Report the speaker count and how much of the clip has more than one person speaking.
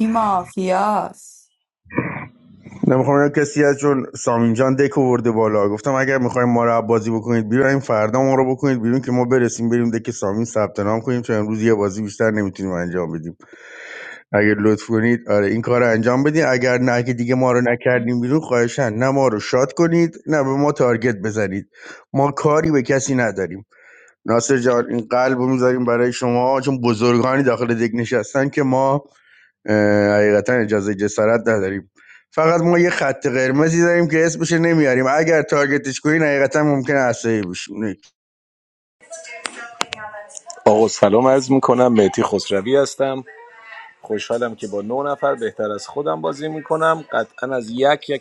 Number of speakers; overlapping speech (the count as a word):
three, no overlap